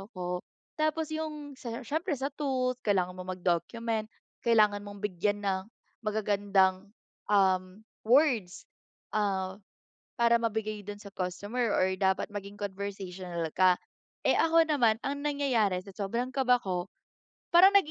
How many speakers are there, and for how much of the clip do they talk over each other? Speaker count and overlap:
one, no overlap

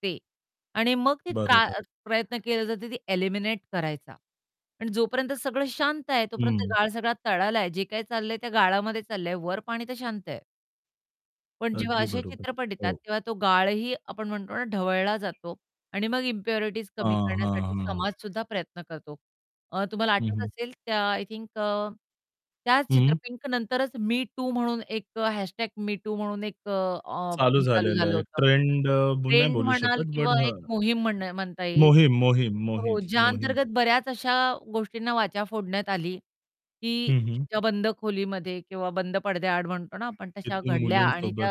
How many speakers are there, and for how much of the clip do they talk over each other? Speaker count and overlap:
two, about 18%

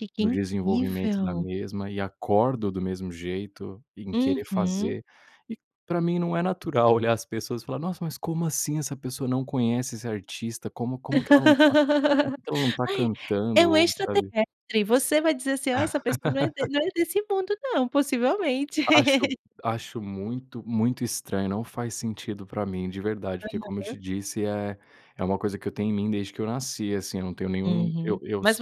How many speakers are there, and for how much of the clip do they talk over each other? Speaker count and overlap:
two, about 14%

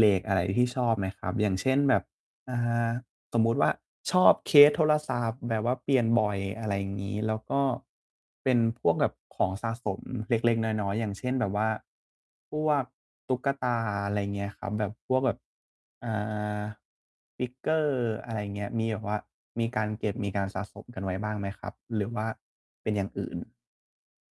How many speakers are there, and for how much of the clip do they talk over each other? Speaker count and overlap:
one, no overlap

